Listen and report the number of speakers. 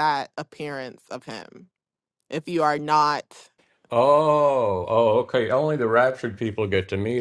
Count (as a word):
two